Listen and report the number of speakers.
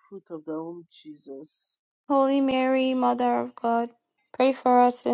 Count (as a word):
two